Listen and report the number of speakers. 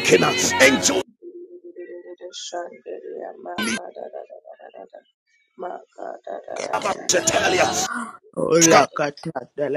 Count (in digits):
3